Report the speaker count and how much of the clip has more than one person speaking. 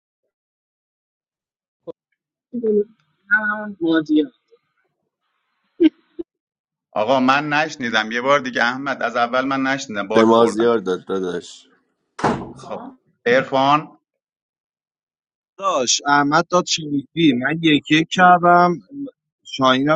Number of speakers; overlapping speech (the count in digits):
4, about 3%